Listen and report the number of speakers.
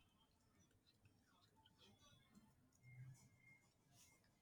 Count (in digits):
0